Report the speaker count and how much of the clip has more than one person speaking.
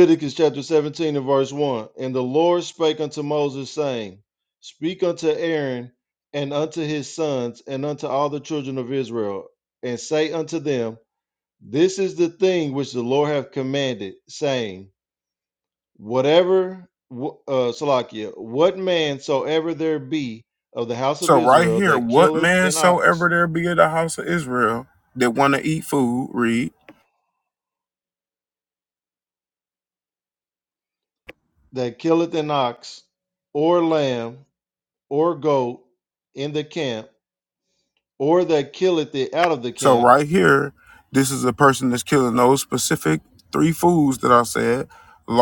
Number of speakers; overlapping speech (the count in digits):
2, about 5%